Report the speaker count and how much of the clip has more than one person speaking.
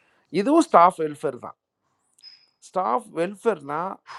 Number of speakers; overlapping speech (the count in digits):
1, no overlap